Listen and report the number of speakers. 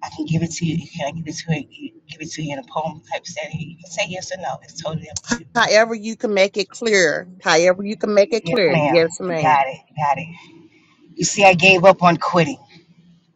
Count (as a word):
two